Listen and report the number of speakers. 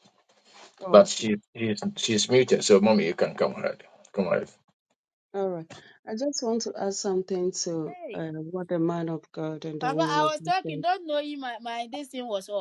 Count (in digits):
3